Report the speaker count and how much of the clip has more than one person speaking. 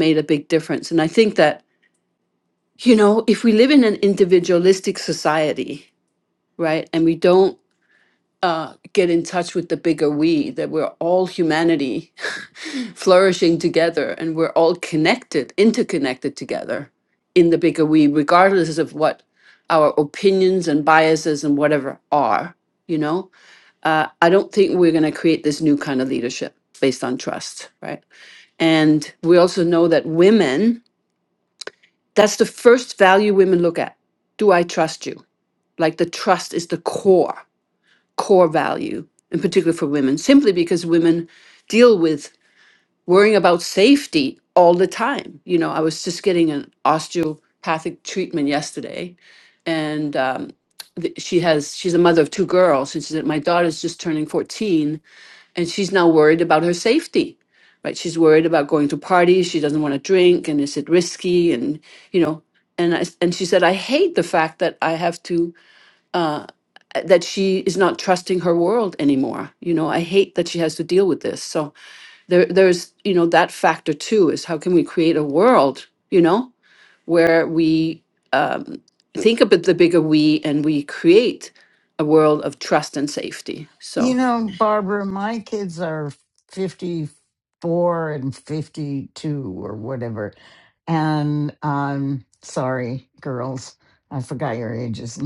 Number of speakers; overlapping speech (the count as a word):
two, under 1%